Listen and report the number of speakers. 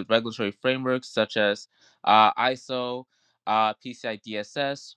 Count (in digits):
1